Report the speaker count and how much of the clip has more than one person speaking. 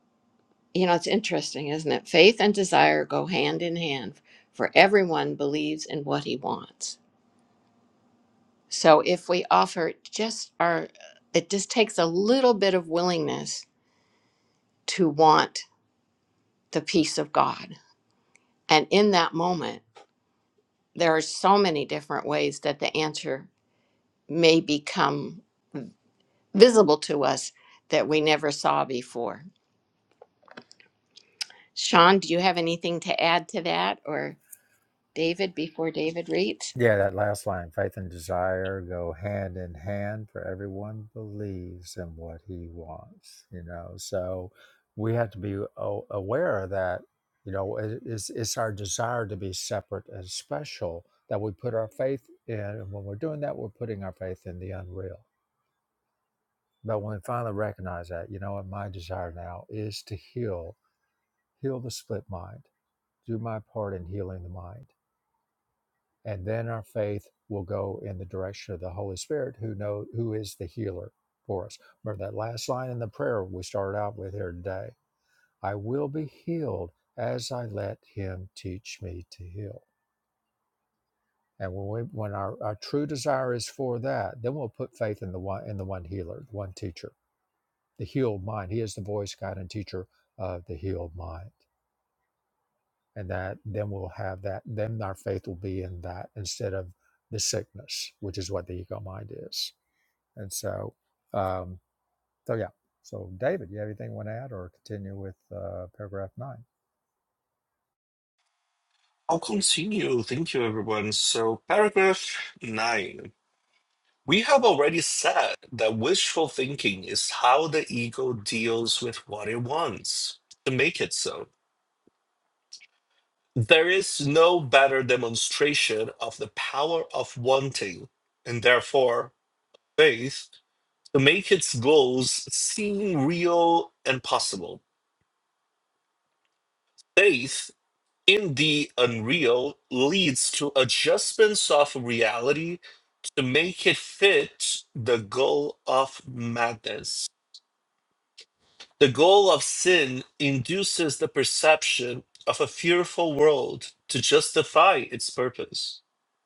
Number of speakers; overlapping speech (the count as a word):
three, no overlap